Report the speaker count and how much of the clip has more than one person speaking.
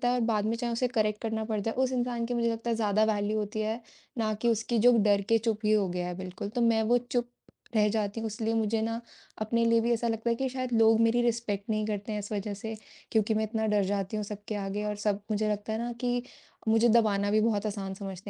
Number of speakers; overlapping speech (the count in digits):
1, no overlap